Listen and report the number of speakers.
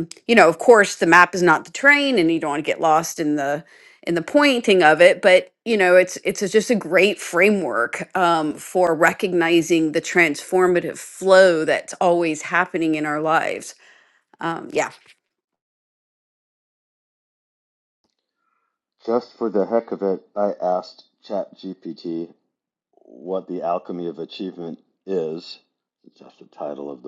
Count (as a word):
two